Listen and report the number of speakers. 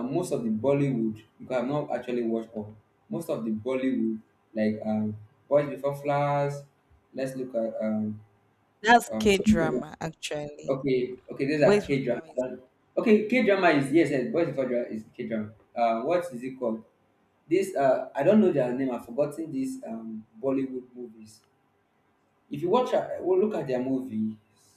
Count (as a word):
two